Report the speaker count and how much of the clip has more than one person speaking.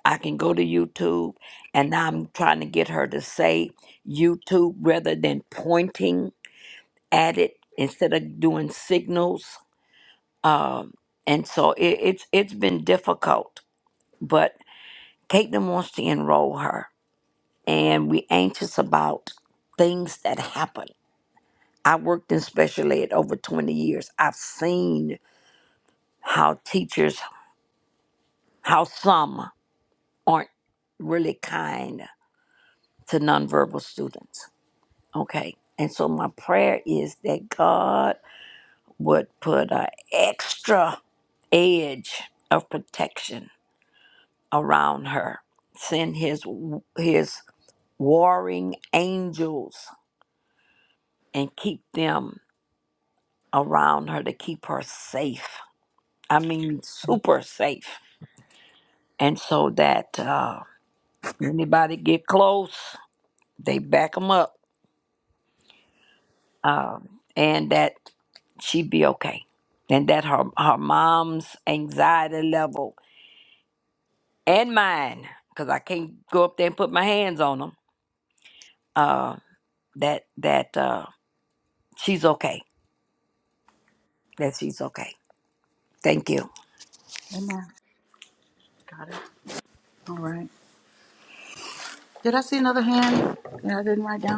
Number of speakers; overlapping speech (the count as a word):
two, no overlap